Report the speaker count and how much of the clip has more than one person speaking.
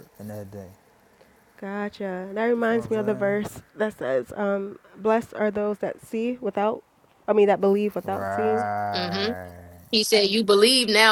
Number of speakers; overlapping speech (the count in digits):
3, about 13%